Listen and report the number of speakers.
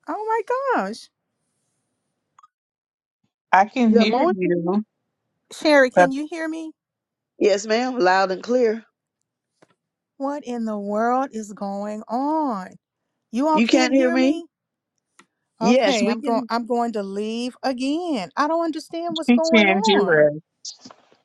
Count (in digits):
3